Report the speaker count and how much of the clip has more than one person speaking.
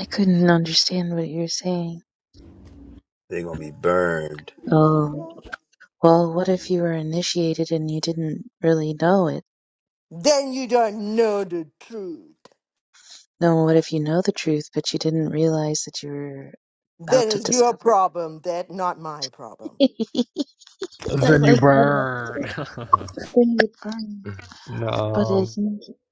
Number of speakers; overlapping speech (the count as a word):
four, about 10%